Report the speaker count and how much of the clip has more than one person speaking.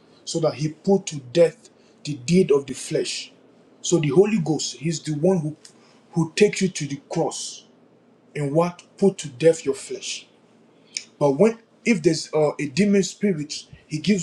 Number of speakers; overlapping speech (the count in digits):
1, no overlap